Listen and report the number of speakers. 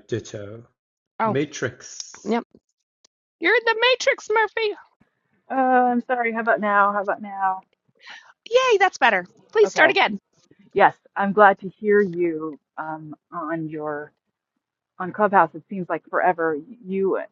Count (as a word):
three